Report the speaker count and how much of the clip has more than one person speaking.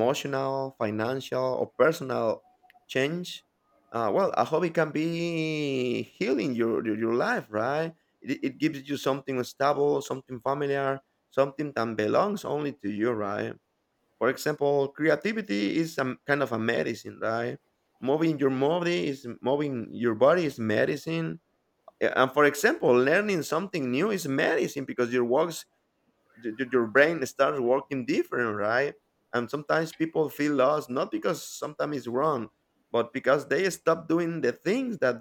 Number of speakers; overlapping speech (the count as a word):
one, no overlap